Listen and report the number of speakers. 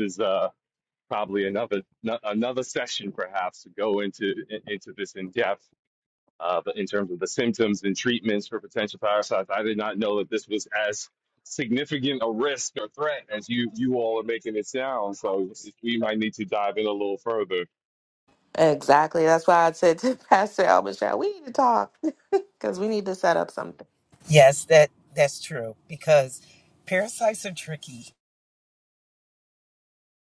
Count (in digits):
3